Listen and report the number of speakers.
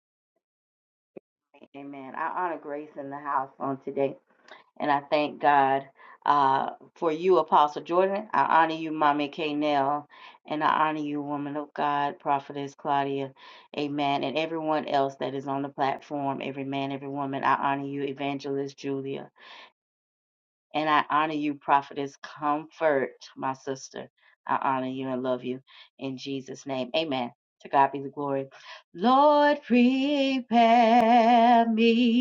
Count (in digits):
1